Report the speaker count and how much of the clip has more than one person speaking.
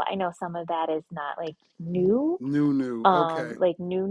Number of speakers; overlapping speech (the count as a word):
two, about 13%